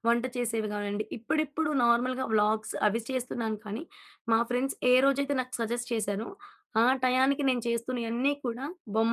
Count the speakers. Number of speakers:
one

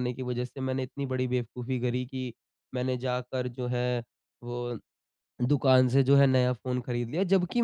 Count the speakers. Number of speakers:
one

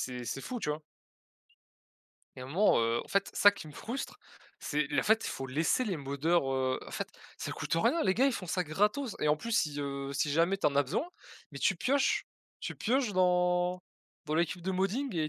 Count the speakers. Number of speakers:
one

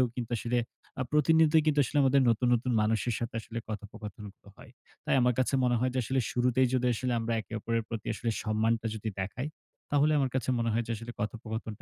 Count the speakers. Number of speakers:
one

